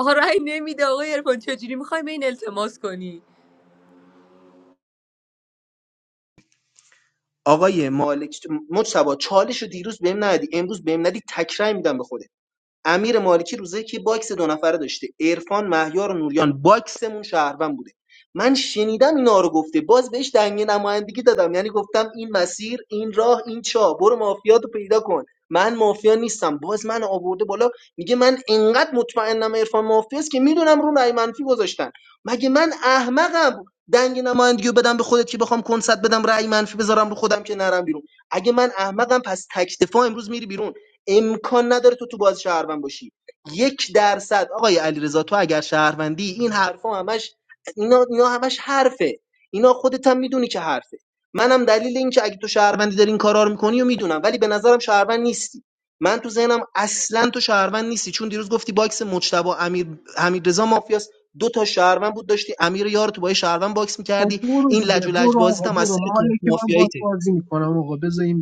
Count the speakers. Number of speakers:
3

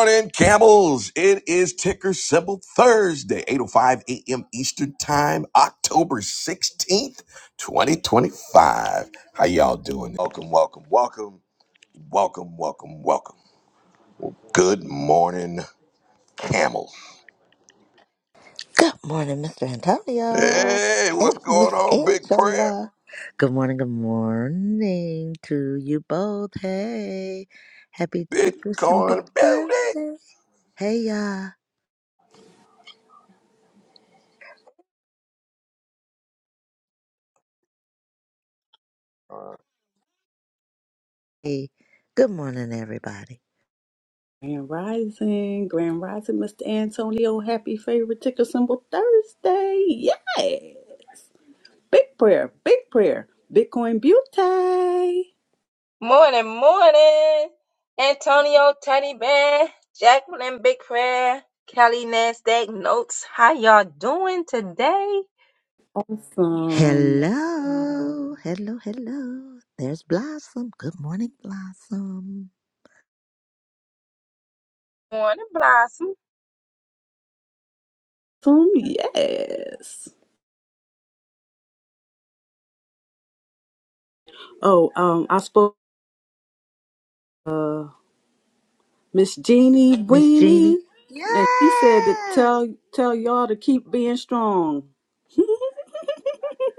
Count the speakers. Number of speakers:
4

